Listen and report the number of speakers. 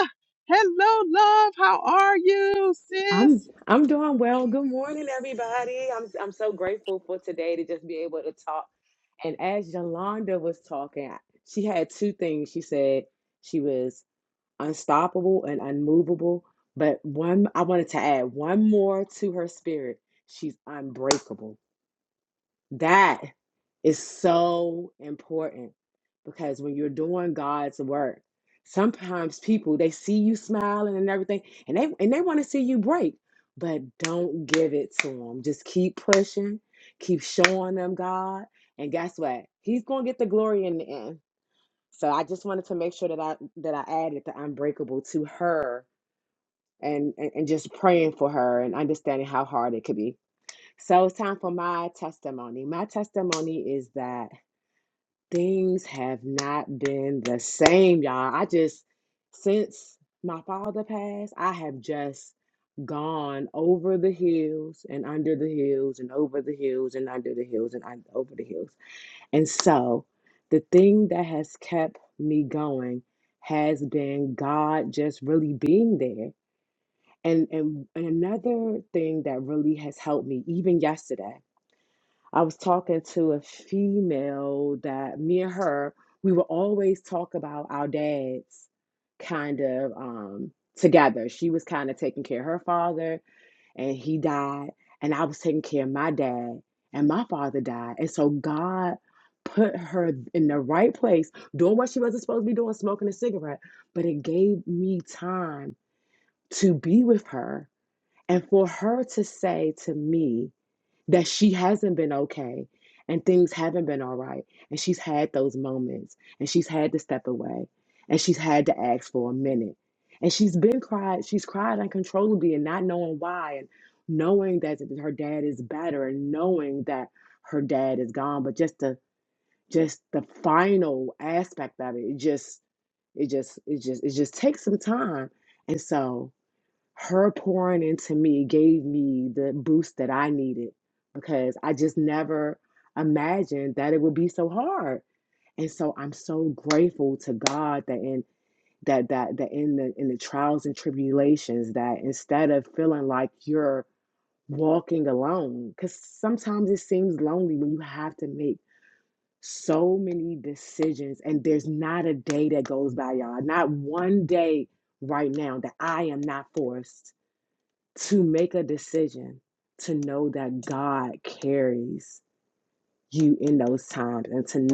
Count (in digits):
2